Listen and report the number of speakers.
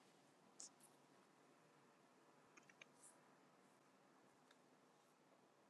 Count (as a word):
zero